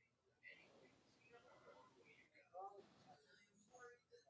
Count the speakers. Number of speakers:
0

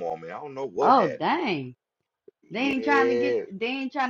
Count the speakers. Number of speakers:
2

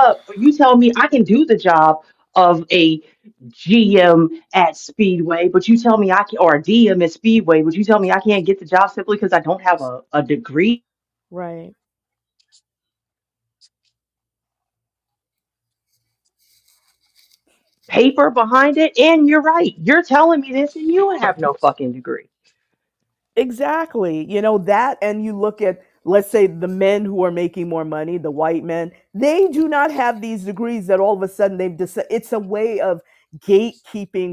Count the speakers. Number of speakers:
2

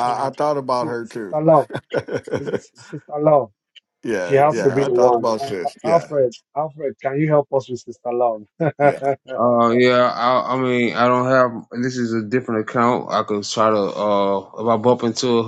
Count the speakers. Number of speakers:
3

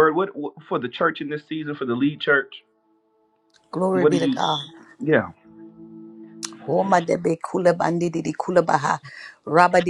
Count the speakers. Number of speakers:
2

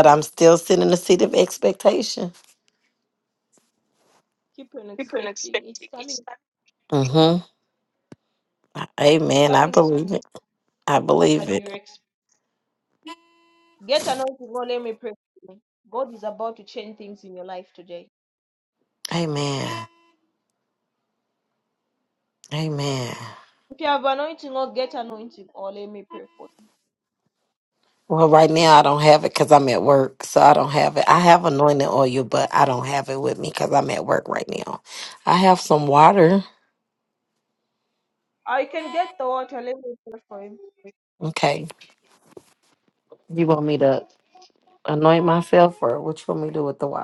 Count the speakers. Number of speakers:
2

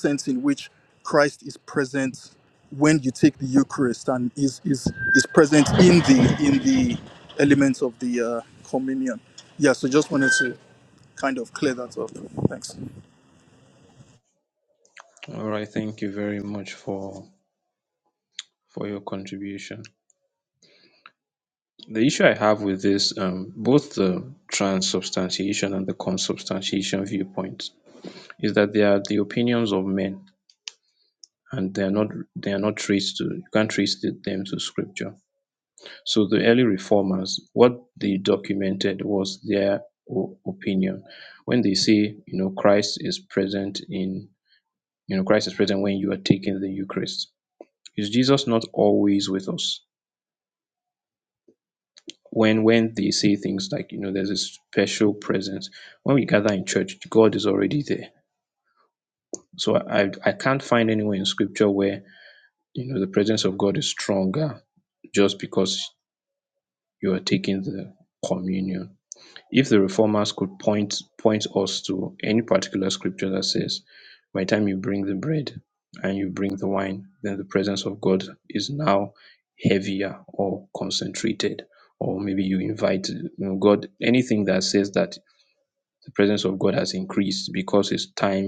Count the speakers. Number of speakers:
2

